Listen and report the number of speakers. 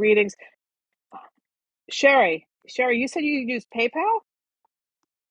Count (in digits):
1